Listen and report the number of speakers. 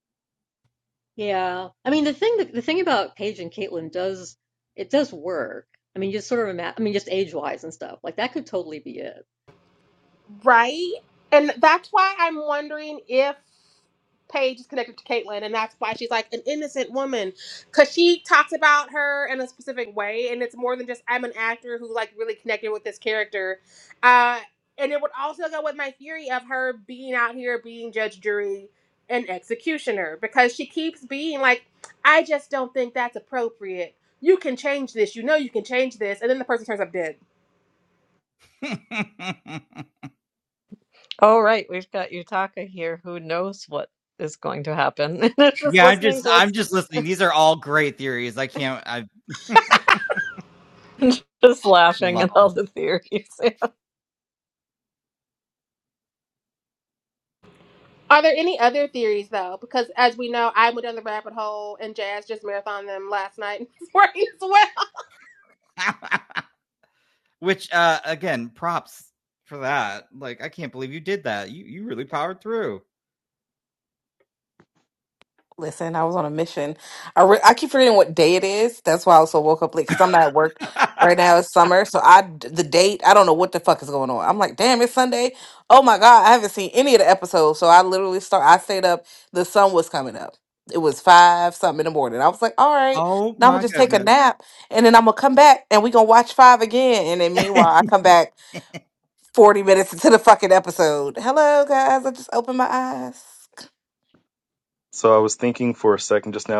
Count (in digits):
6